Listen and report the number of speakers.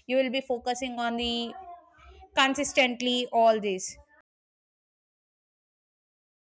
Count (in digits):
1